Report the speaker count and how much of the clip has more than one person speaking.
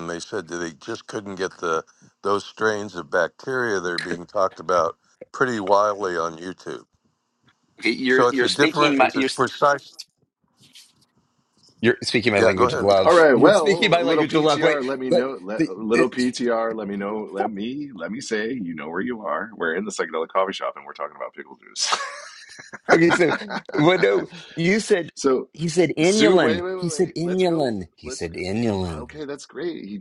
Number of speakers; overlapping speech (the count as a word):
three, about 23%